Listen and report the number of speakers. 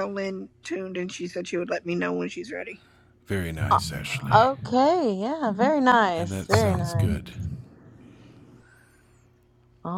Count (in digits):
3